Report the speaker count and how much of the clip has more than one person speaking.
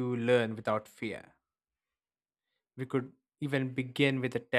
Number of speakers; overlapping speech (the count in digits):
1, no overlap